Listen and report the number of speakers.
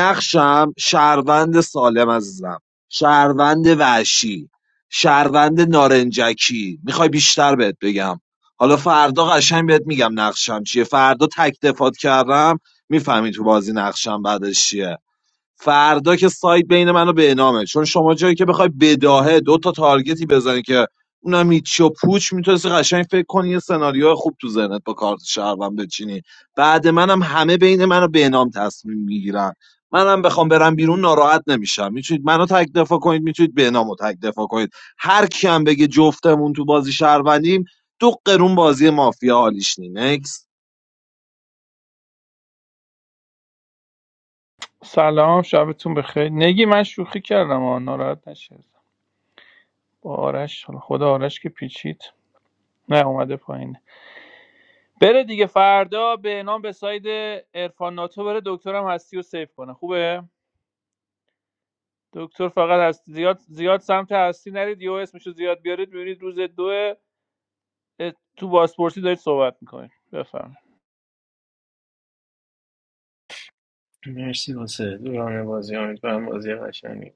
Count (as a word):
three